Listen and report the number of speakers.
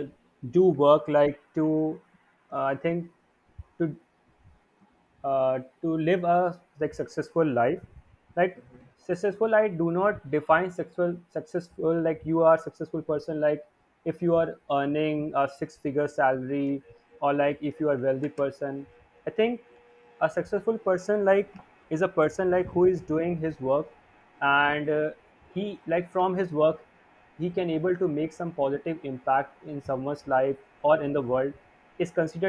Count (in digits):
1